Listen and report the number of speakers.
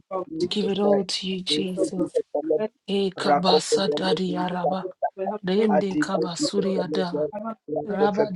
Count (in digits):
3